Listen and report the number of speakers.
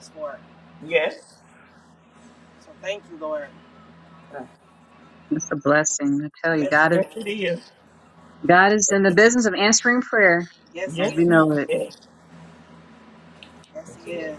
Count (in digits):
3